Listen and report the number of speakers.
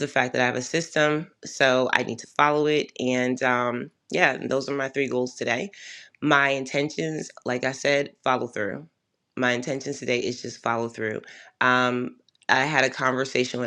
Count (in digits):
1